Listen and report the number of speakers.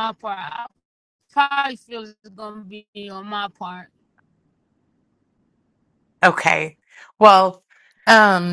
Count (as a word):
two